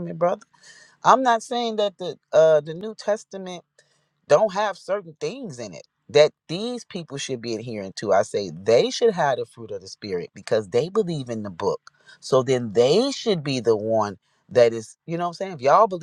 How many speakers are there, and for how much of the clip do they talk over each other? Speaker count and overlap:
1, no overlap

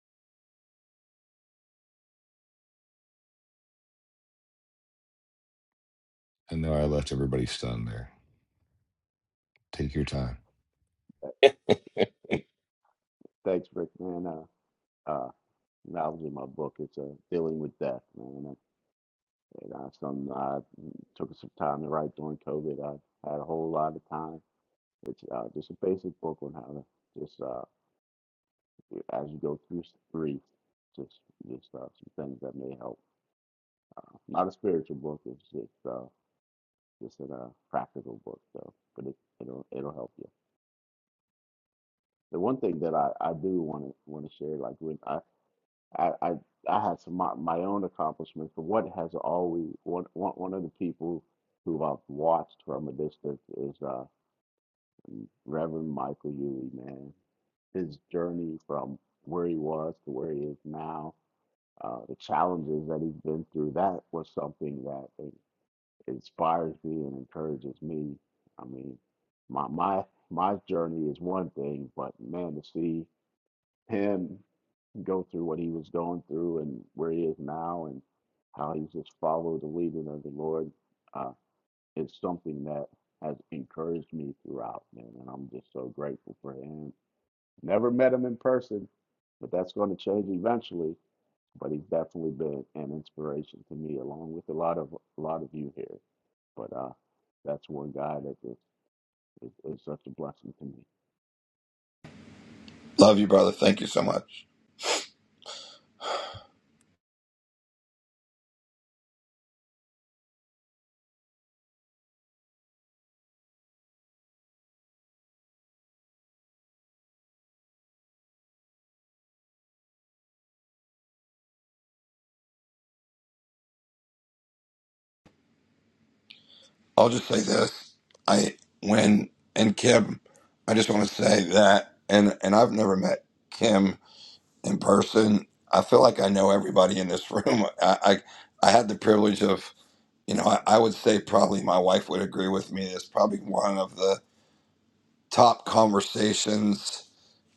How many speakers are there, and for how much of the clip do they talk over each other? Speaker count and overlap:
3, no overlap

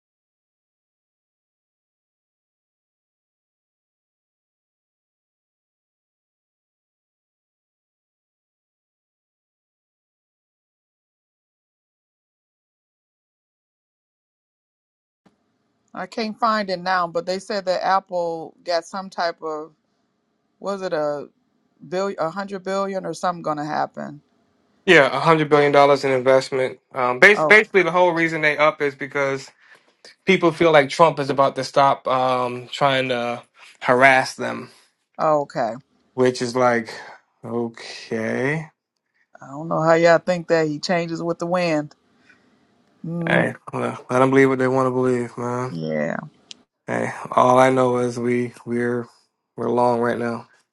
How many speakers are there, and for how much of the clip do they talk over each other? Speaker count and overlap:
2, about 1%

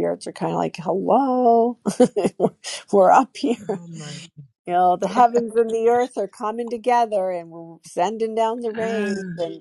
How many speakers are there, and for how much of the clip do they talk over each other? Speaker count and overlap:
2, about 5%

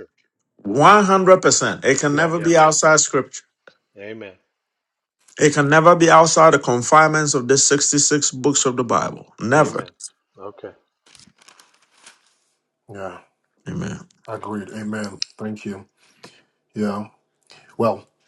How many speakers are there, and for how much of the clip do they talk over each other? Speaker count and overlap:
3, about 4%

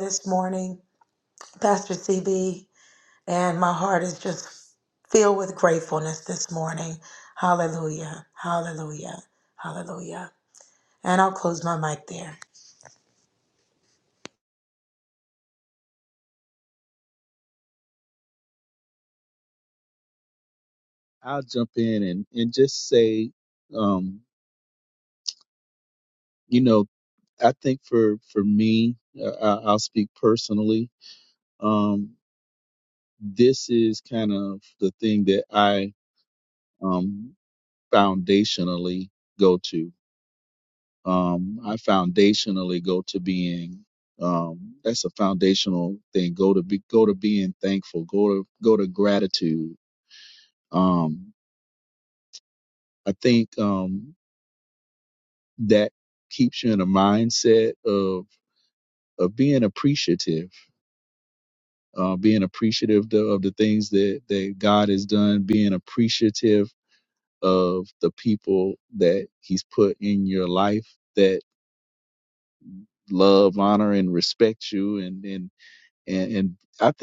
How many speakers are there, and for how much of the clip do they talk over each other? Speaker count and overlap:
2, no overlap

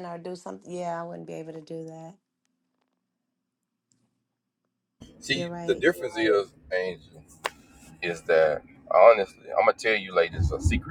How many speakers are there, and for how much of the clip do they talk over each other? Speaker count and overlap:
2, about 4%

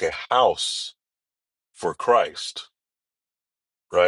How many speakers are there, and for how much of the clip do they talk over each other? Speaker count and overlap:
1, no overlap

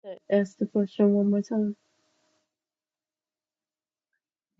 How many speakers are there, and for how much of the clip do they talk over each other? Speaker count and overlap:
1, no overlap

